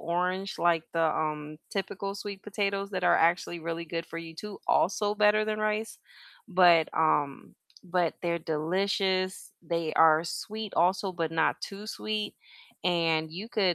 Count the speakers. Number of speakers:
1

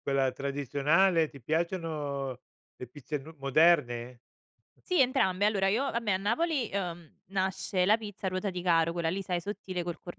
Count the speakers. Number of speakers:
2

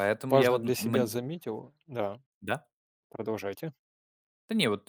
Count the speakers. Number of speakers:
2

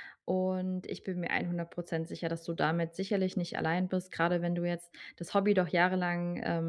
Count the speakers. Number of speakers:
1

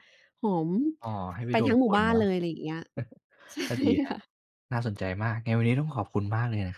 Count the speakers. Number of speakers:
2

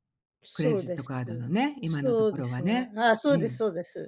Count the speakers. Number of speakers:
2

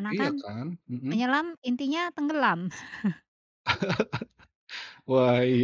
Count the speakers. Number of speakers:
2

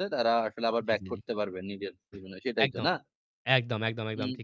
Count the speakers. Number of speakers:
2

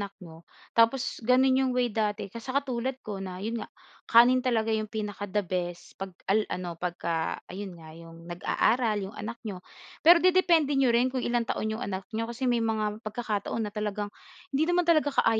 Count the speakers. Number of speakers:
1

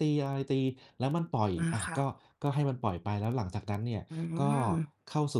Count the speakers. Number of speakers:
2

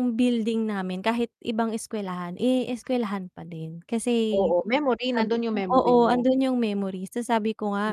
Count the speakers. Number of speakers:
2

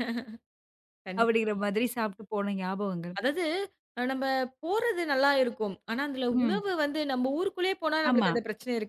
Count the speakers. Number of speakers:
2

